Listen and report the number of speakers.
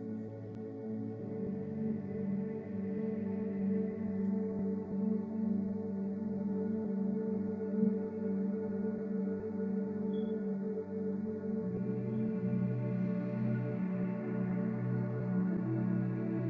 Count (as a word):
zero